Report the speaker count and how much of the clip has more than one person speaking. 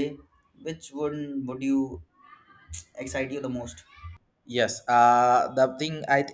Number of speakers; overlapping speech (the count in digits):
2, no overlap